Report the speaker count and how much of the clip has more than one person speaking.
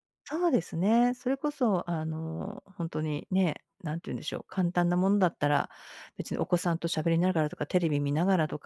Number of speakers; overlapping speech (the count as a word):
one, no overlap